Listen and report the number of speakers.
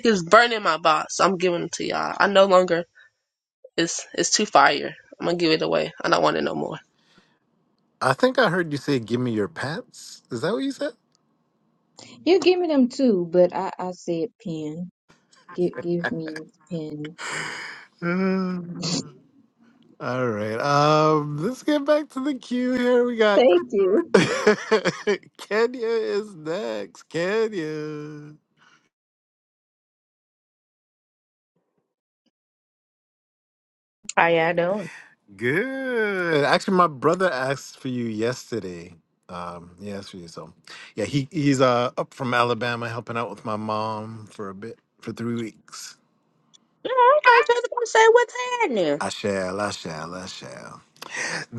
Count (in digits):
4